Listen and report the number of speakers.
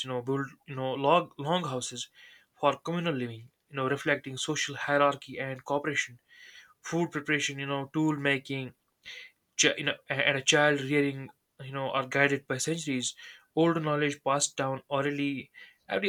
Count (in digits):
1